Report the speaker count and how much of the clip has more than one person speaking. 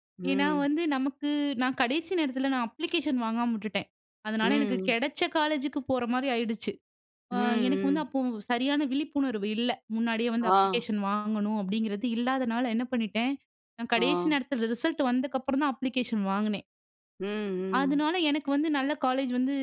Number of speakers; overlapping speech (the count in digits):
2, about 14%